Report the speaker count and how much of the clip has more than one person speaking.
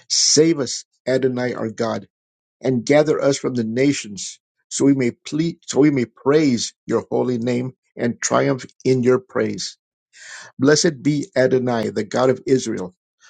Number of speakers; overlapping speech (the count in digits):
1, no overlap